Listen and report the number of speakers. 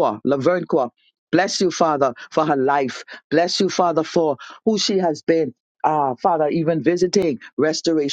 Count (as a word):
one